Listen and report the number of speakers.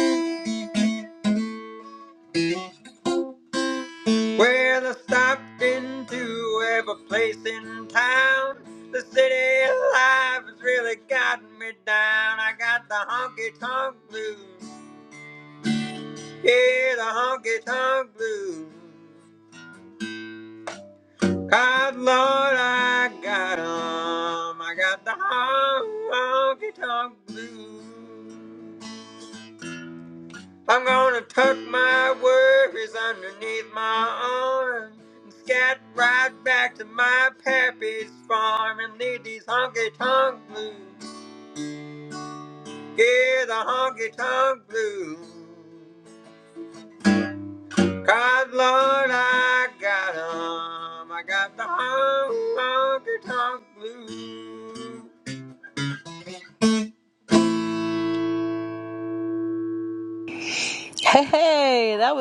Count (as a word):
two